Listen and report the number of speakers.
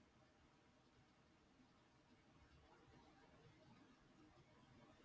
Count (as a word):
zero